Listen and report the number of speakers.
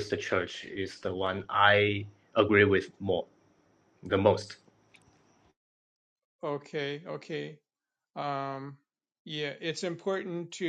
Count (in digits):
2